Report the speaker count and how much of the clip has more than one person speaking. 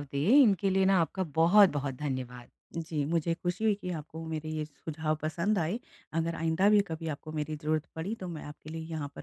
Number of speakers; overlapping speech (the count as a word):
two, no overlap